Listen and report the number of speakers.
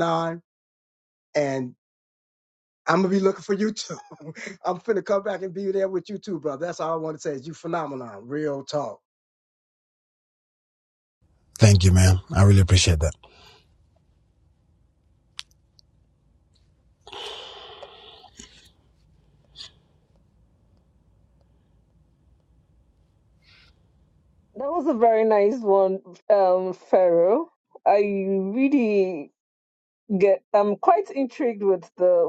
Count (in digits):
3